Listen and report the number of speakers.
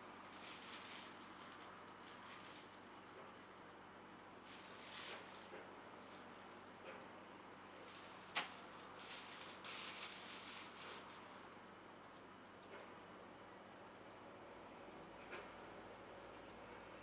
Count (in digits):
0